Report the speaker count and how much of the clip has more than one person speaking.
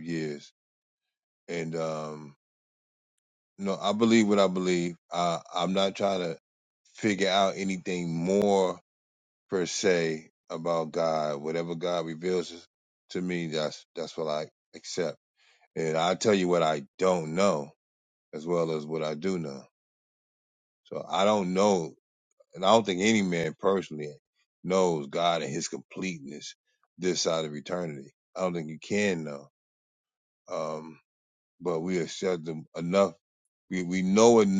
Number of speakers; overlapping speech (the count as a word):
one, no overlap